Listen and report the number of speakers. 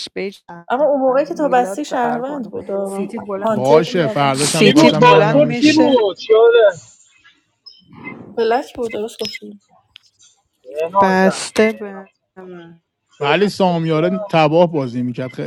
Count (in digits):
4